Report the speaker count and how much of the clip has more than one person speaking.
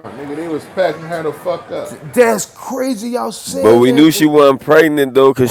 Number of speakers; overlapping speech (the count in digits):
3, about 12%